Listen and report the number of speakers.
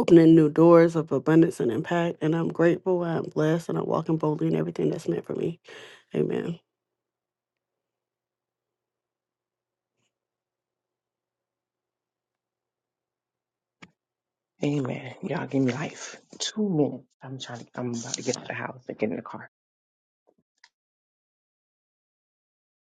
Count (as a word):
two